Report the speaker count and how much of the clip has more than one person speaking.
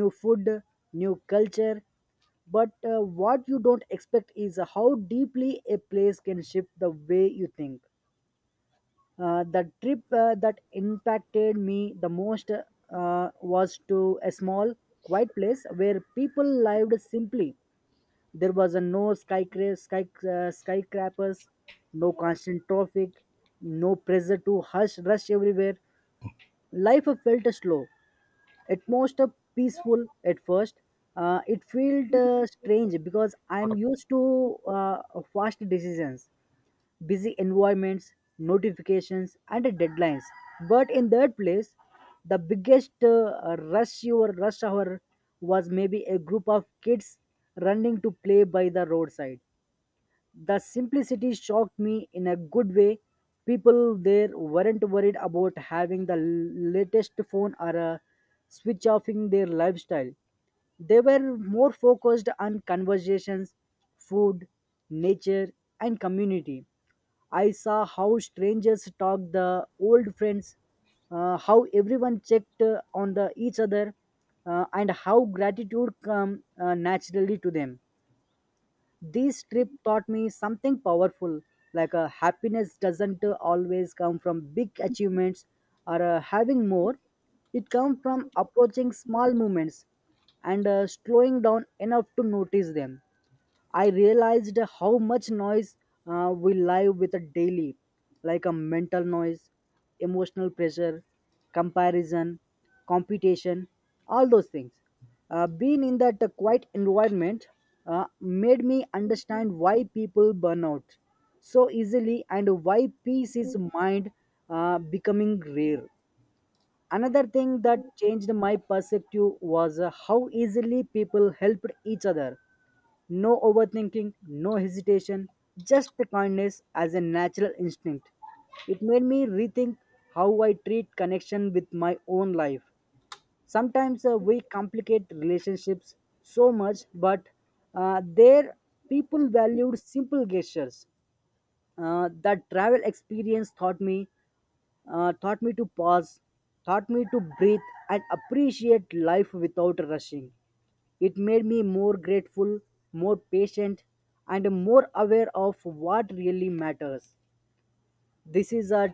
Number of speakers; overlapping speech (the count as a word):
one, no overlap